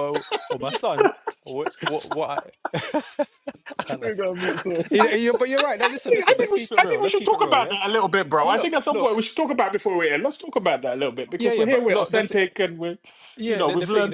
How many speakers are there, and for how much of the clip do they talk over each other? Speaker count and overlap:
3, about 34%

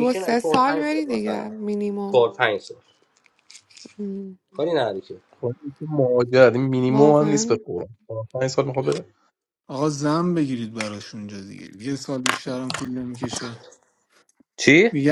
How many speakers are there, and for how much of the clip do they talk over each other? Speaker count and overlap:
4, about 15%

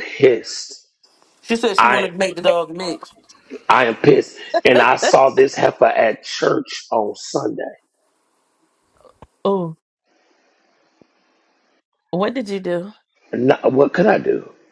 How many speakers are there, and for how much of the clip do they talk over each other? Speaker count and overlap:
3, about 2%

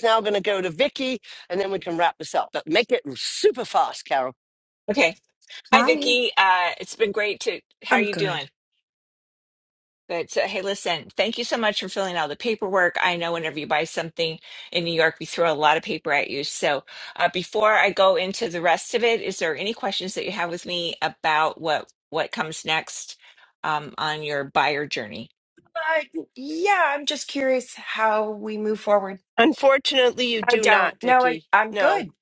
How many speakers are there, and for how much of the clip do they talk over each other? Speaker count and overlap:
4, about 7%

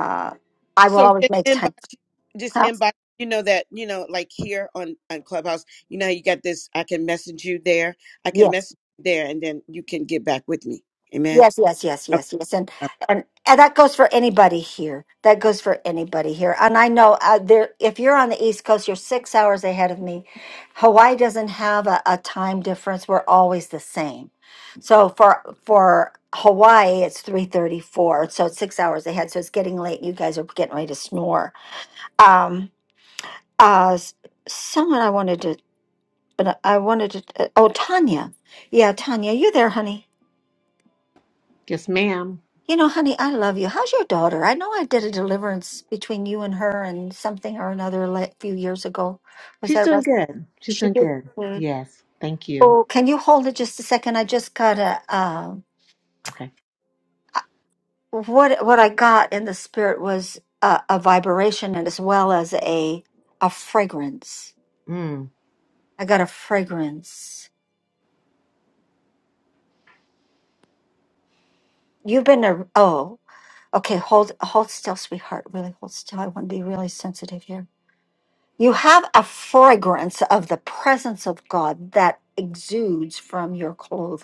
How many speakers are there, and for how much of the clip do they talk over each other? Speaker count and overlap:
3, about 3%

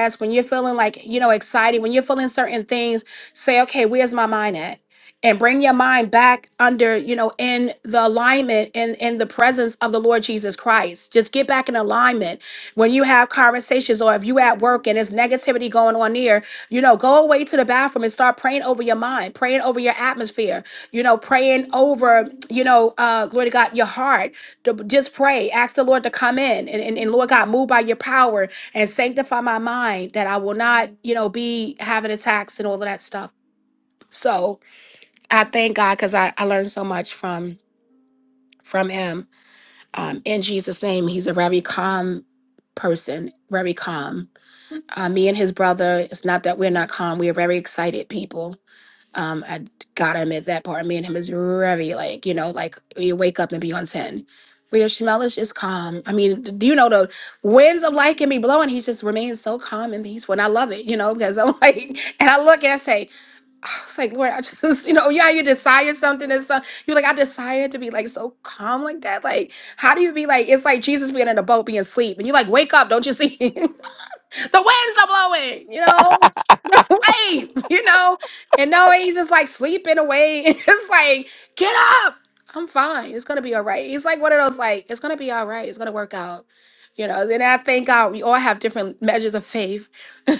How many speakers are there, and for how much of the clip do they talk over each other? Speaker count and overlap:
1, no overlap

